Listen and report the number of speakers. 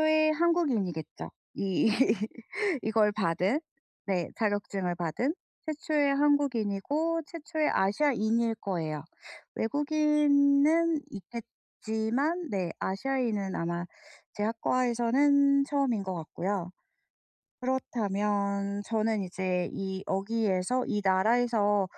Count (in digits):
1